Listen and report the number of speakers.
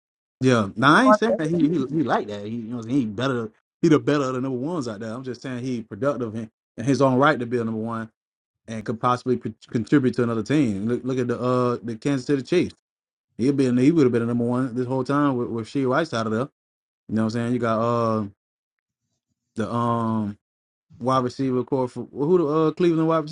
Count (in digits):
1